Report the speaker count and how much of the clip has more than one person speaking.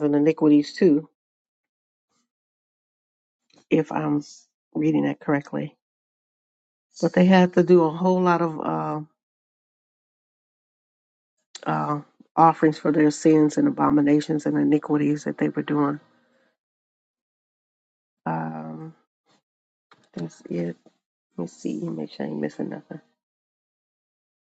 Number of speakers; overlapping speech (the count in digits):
1, no overlap